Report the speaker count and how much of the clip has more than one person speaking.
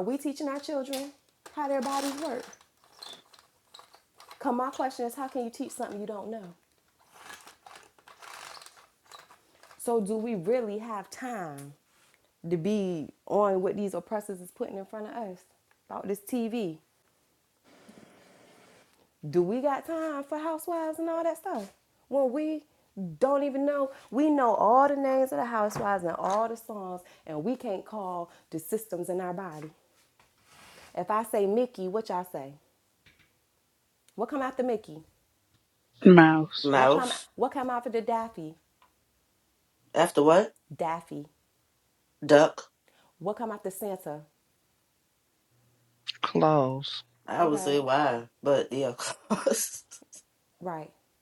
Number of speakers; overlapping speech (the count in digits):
3, about 2%